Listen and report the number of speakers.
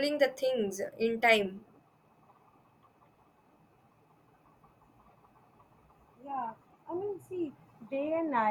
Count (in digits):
2